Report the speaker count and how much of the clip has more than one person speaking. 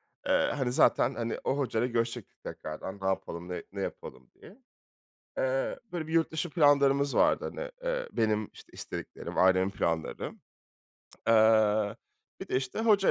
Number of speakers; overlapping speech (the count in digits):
1, no overlap